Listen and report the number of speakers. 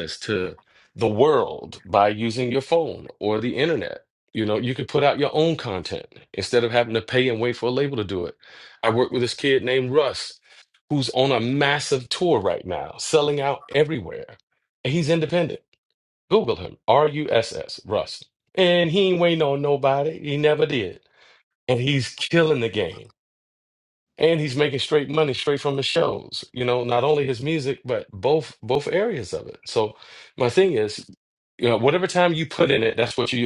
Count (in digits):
1